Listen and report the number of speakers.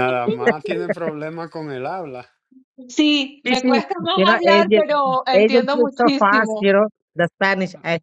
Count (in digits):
3